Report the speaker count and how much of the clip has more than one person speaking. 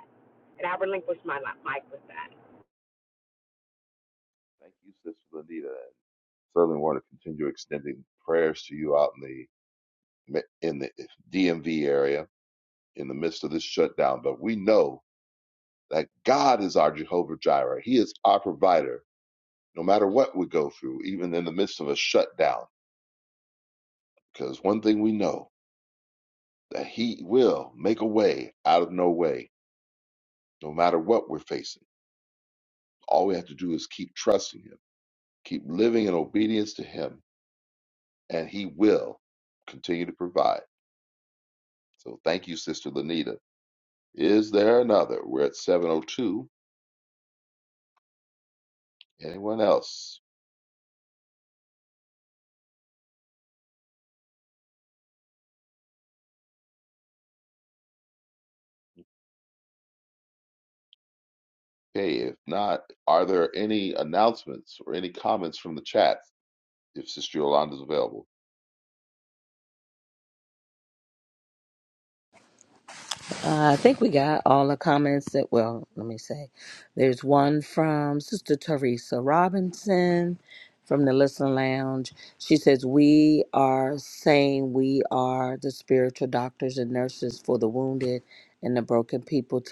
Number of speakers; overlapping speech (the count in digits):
3, no overlap